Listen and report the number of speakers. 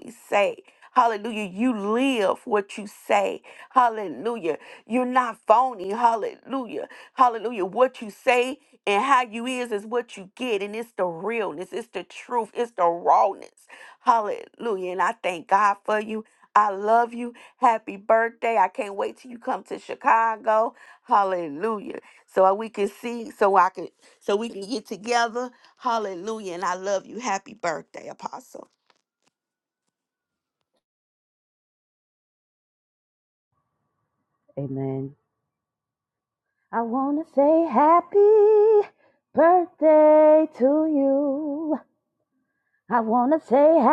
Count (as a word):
two